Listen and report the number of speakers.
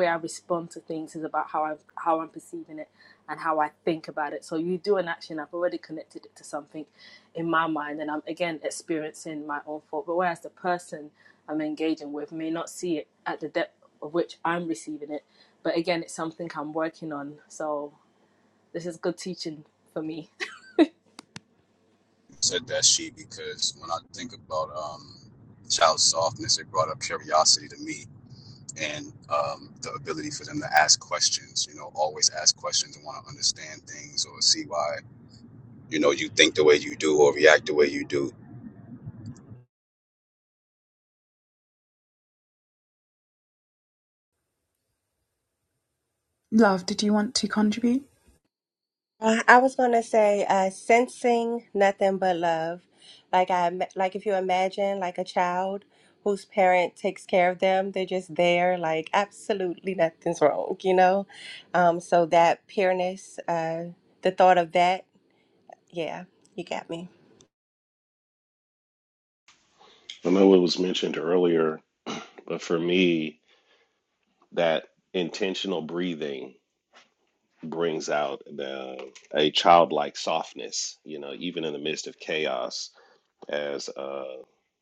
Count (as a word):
five